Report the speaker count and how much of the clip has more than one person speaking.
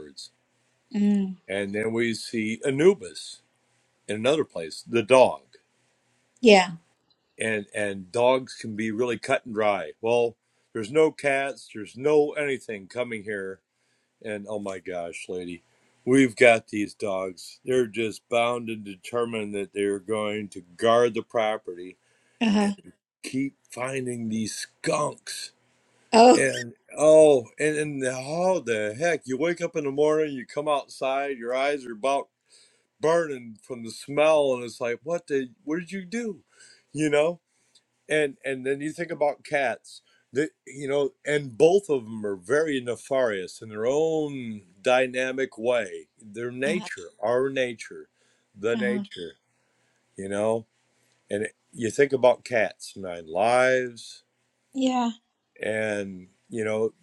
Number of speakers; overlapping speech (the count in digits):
2, about 1%